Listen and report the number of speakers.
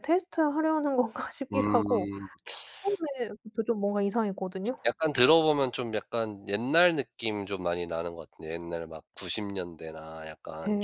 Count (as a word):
two